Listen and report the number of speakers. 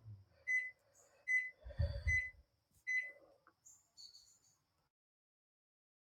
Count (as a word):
zero